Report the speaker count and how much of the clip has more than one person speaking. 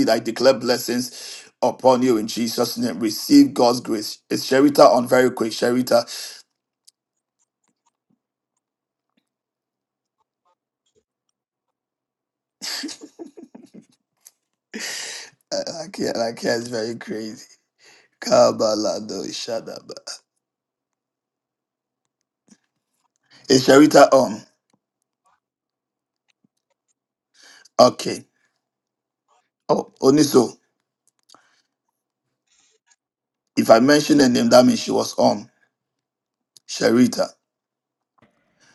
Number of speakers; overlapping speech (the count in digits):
1, no overlap